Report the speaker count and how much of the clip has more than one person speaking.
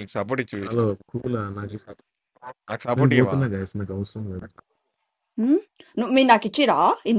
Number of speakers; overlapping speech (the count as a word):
three, about 10%